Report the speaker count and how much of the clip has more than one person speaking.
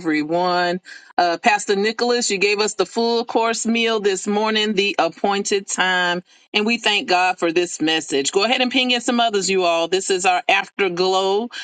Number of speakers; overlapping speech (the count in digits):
1, no overlap